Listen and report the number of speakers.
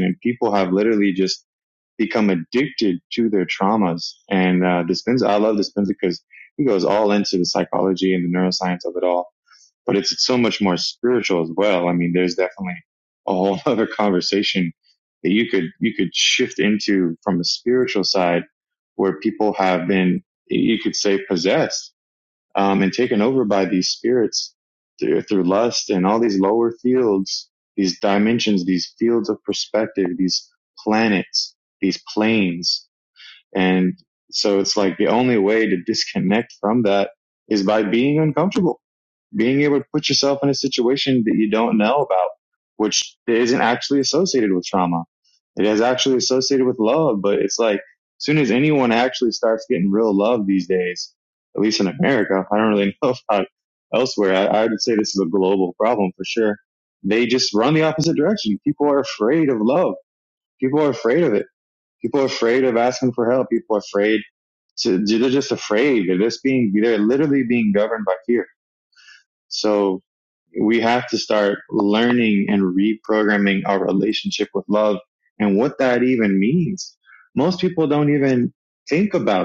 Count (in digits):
1